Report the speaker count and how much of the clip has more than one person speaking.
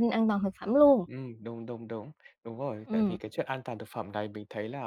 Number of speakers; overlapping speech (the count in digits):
2, about 6%